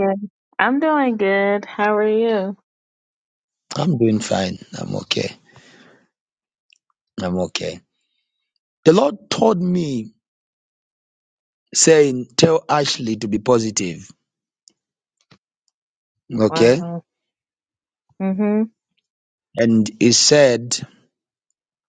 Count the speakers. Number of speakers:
2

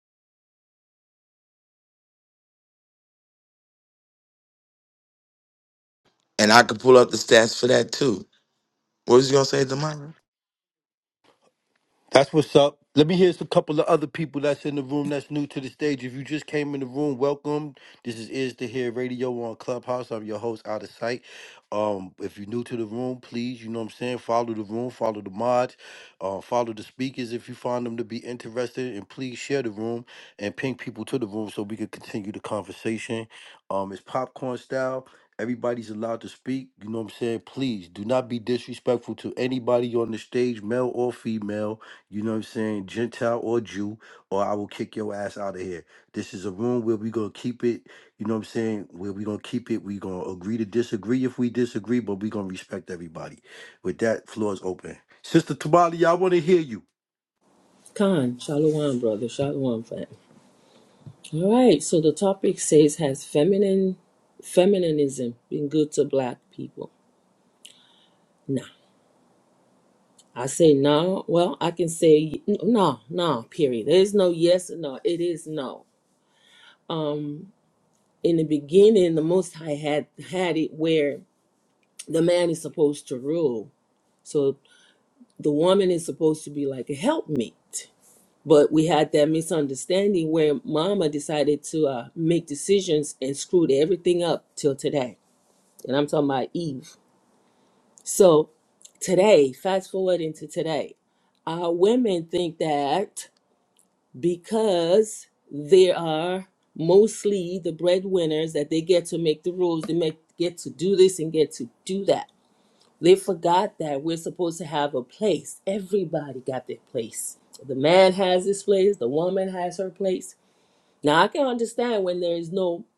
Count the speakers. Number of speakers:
3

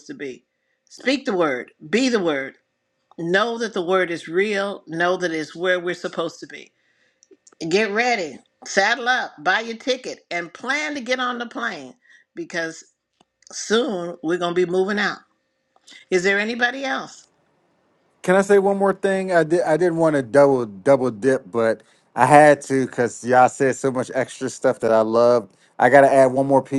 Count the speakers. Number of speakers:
2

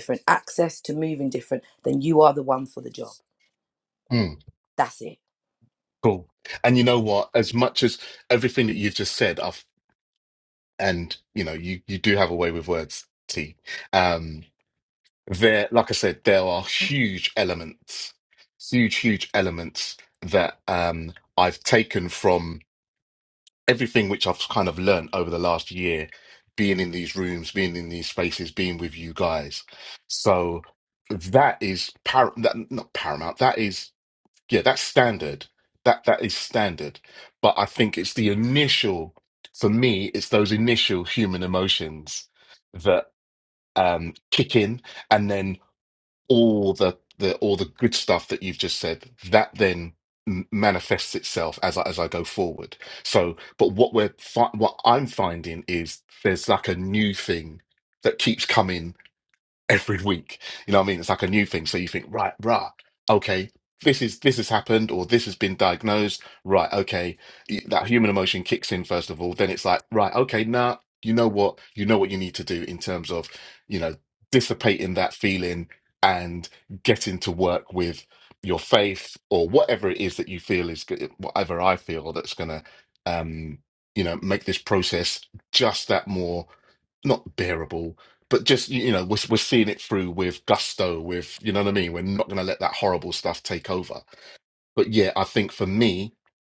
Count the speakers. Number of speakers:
2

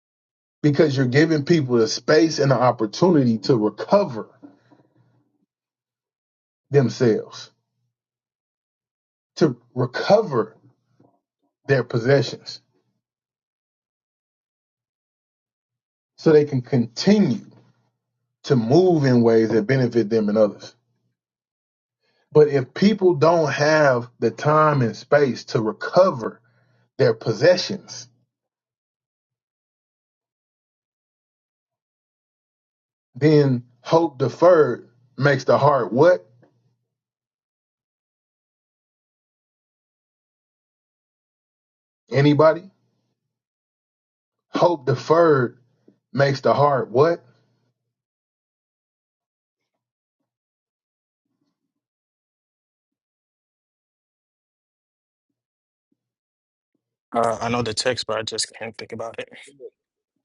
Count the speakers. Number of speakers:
2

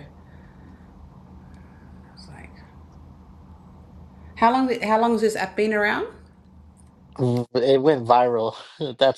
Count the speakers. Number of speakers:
2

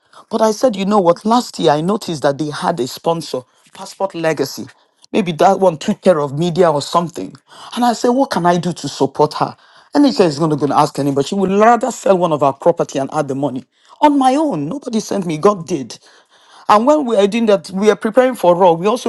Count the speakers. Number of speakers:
1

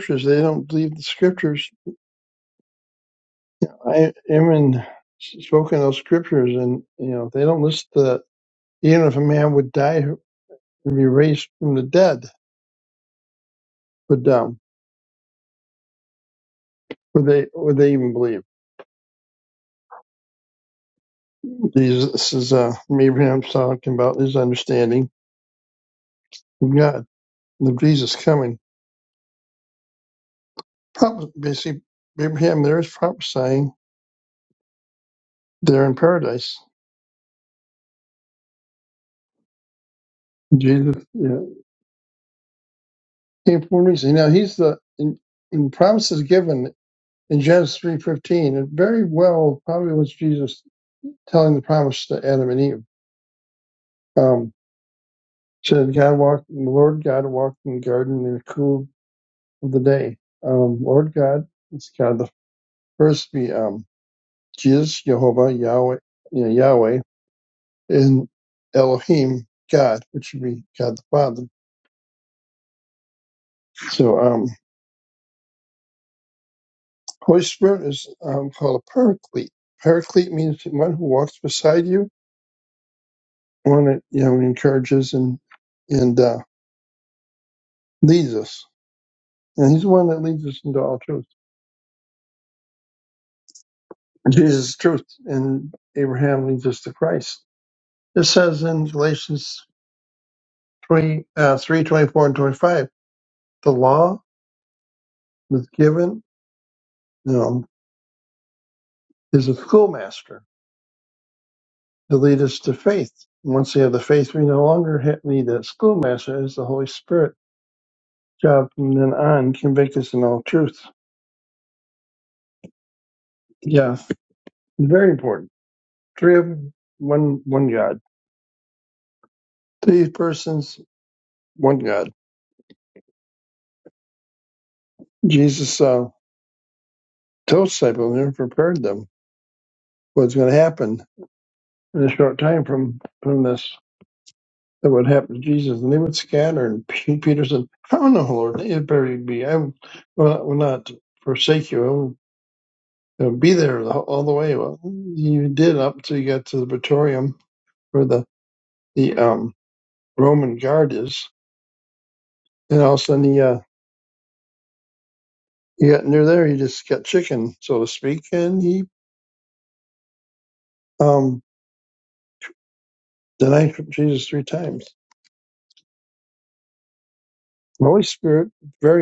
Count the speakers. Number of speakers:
1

